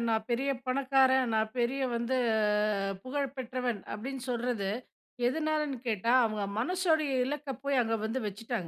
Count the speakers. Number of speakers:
one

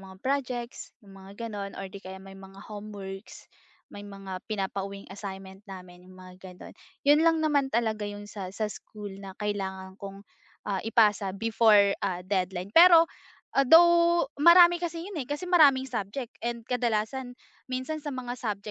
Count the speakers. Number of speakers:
one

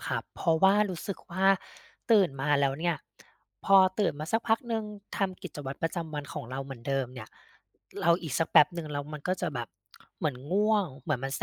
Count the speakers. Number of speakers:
one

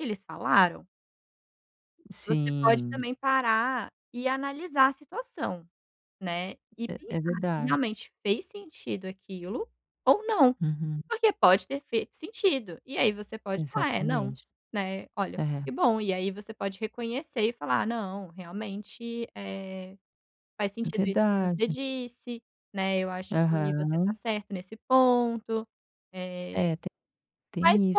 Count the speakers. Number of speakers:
two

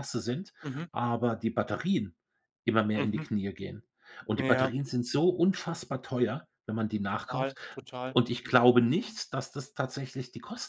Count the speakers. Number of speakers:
two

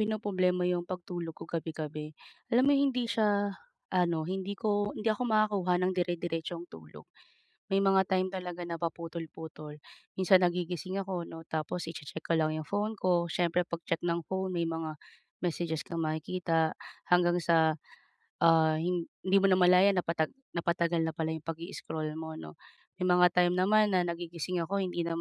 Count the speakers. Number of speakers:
one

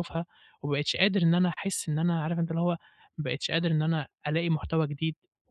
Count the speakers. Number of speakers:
one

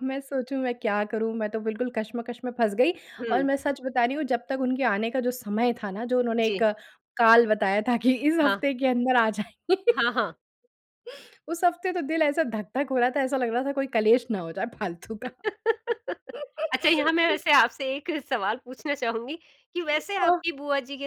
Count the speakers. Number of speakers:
two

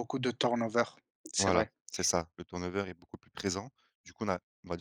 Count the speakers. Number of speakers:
two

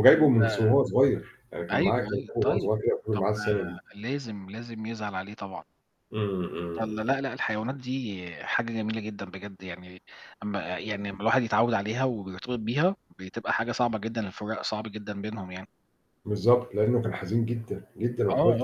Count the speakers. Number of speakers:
two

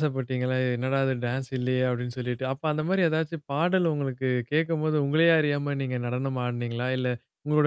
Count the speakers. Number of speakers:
one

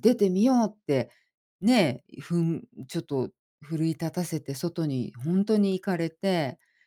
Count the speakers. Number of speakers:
one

